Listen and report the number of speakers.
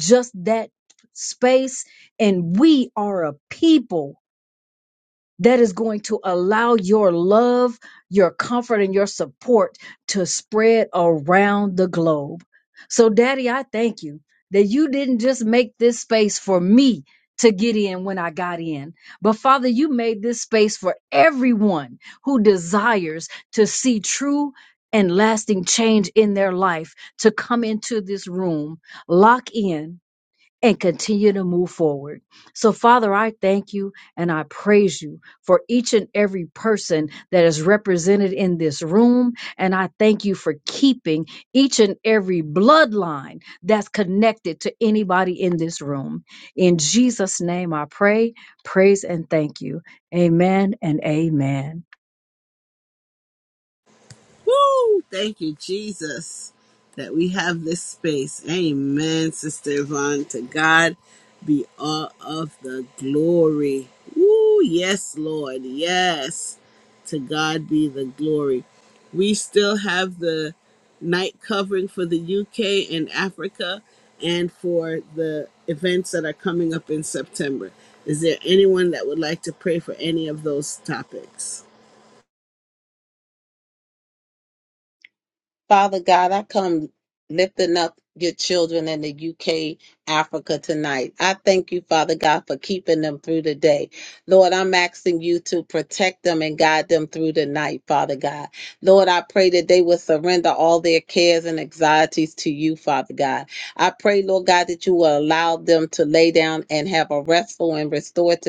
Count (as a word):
three